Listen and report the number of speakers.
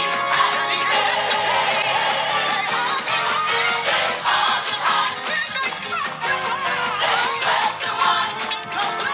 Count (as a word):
zero